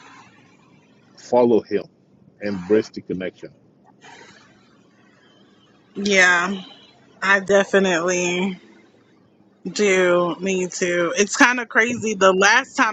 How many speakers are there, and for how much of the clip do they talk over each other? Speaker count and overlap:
2, no overlap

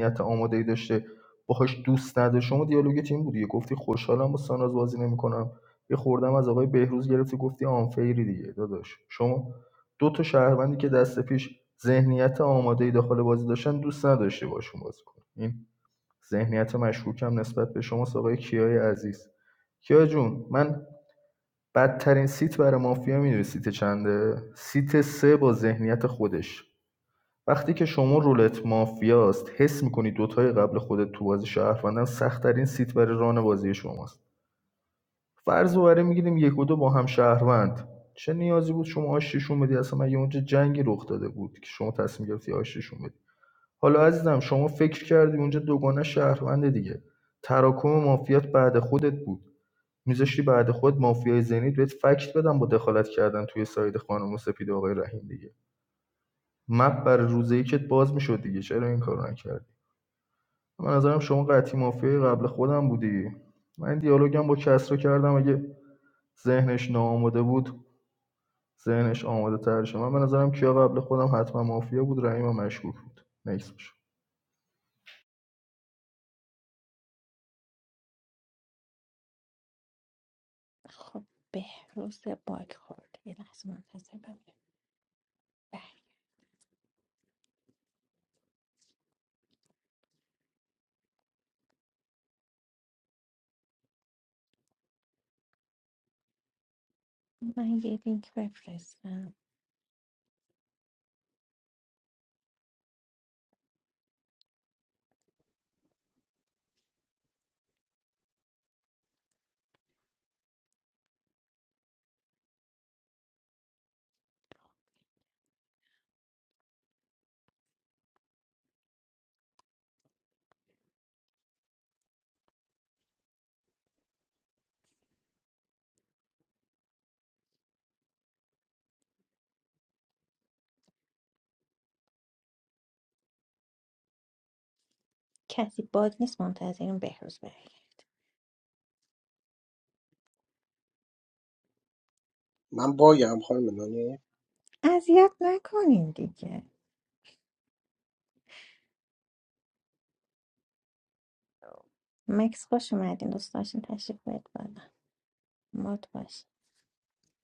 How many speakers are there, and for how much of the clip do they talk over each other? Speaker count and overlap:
3, no overlap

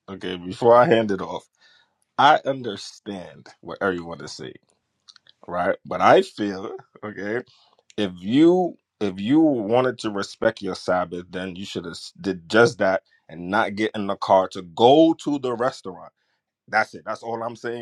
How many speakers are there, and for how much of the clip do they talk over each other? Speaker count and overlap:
1, no overlap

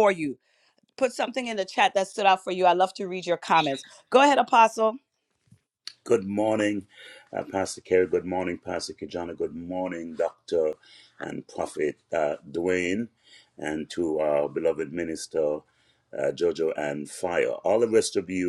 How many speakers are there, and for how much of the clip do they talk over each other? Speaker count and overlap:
2, no overlap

